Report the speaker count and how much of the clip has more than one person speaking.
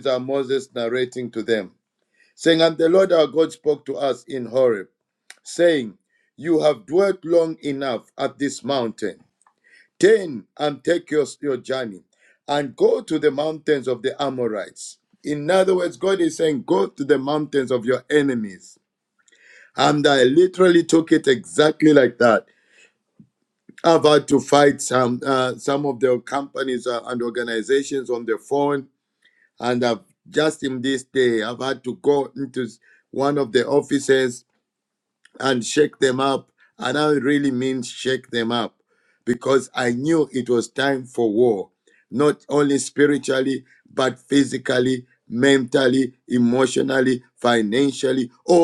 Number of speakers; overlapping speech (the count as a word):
one, no overlap